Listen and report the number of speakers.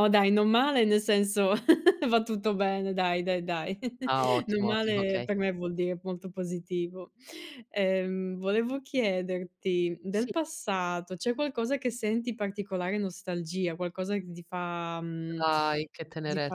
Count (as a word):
two